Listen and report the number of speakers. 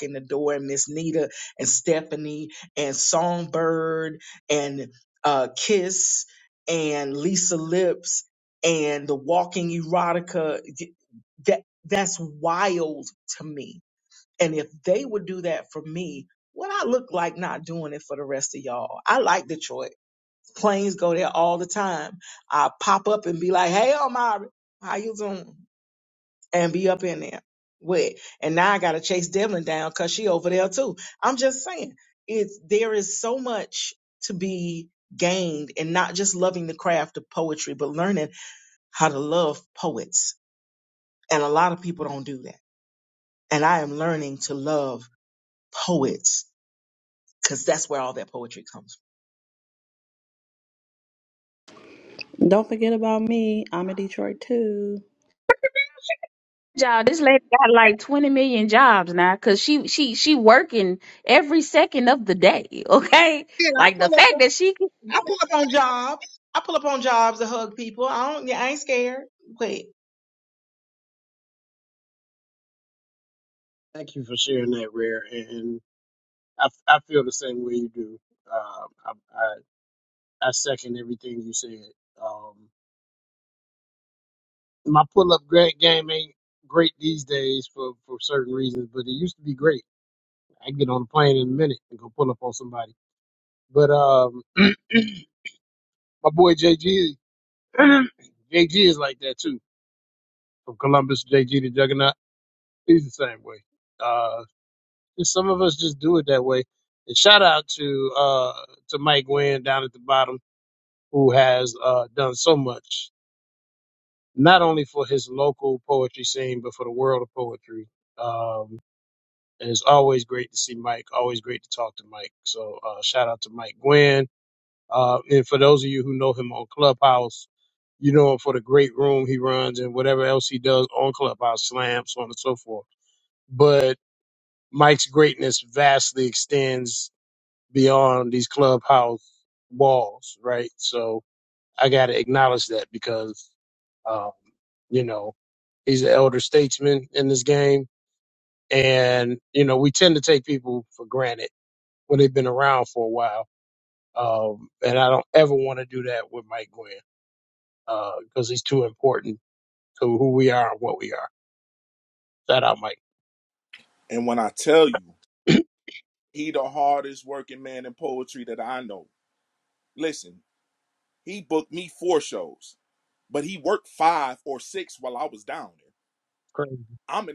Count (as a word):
five